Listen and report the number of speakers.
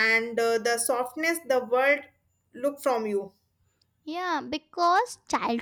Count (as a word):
two